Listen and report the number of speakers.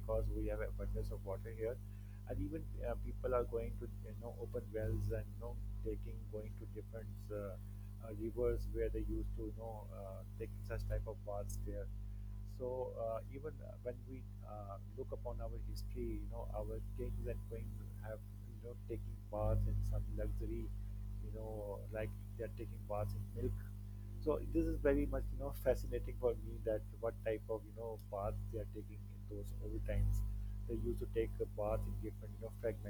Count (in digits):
1